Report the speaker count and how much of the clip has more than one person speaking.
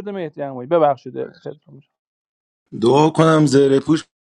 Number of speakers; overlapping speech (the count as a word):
two, no overlap